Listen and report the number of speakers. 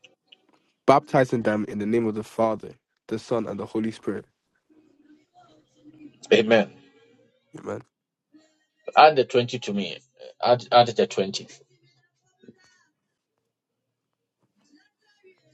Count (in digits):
2